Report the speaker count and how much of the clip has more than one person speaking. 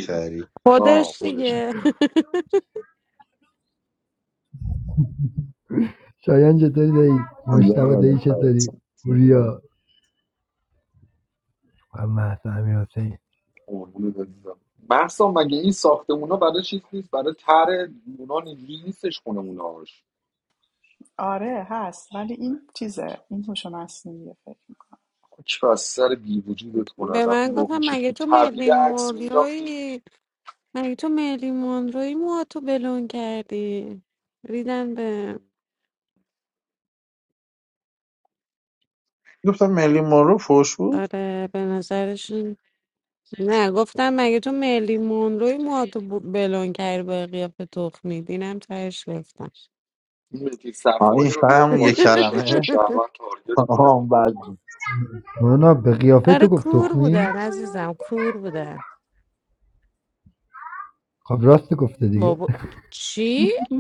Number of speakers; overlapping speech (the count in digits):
5, about 11%